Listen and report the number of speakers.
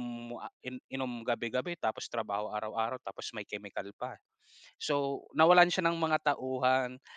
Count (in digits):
1